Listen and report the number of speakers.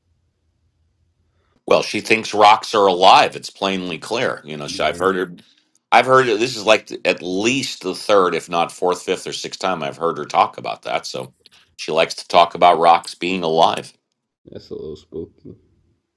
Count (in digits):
2